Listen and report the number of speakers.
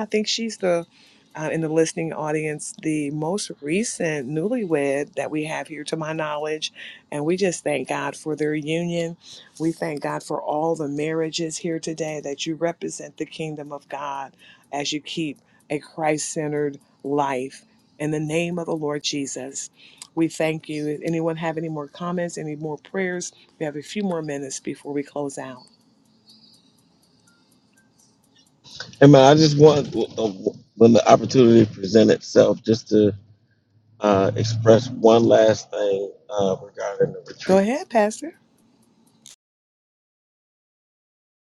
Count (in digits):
2